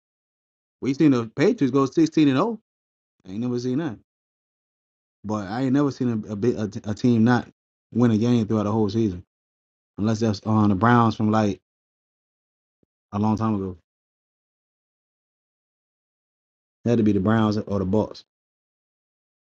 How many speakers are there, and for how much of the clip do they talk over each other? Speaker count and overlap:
1, no overlap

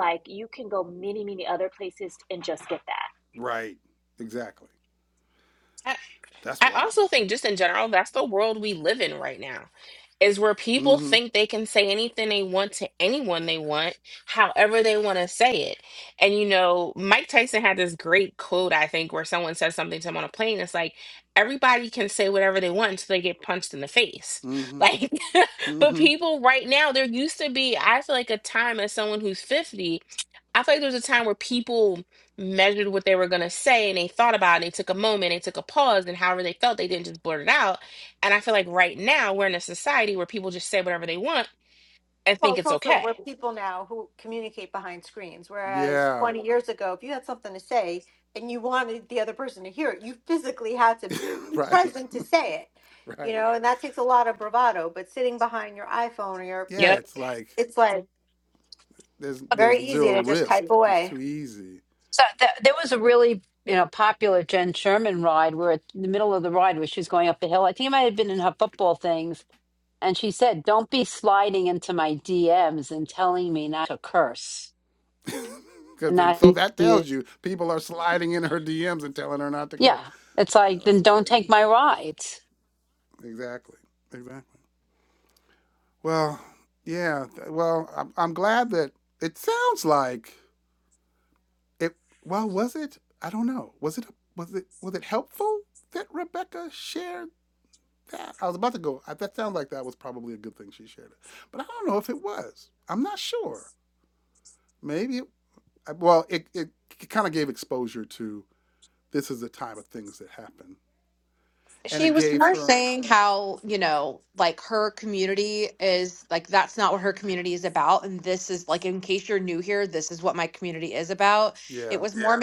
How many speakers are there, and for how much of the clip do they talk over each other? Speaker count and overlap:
6, about 6%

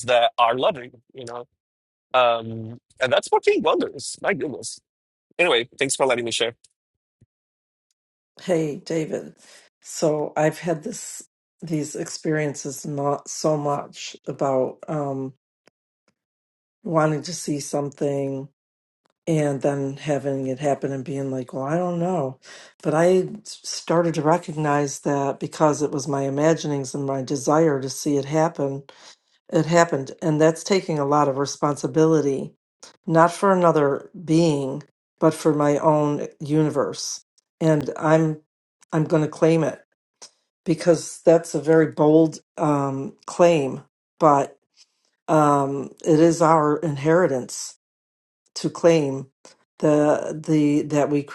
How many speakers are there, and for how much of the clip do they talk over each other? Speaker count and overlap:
2, no overlap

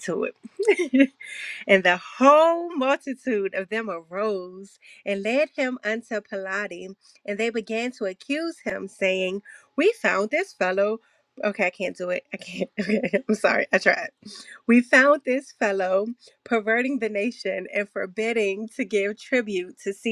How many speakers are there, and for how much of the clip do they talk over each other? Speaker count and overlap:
1, no overlap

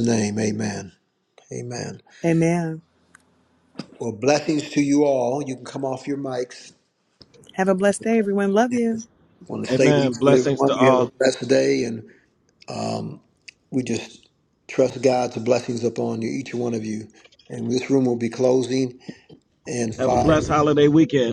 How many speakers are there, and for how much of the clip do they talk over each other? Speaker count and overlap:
3, about 9%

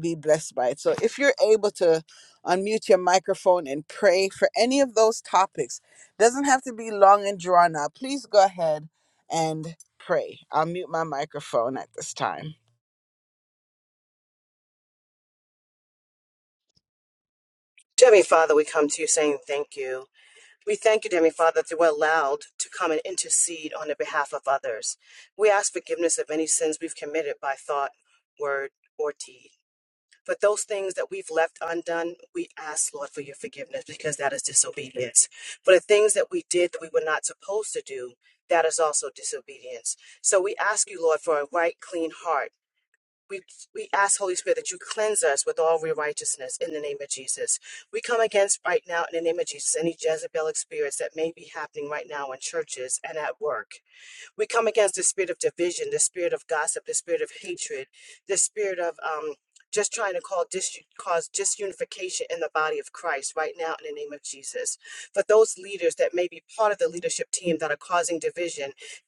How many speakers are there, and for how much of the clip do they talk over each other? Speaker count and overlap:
2, no overlap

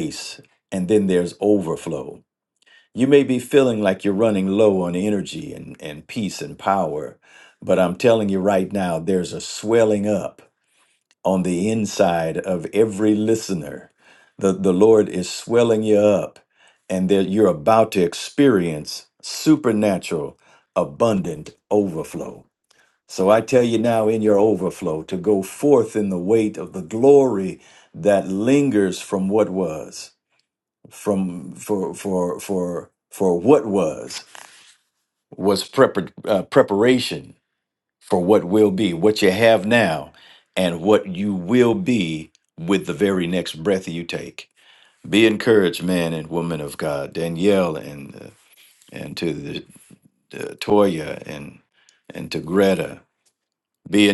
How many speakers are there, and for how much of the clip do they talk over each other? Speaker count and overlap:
1, no overlap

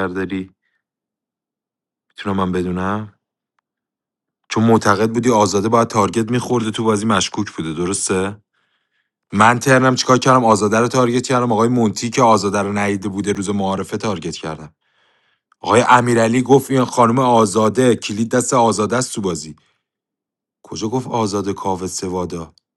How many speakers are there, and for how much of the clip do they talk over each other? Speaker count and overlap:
1, no overlap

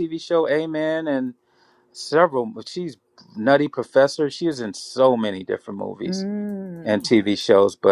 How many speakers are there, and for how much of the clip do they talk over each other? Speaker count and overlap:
2, about 4%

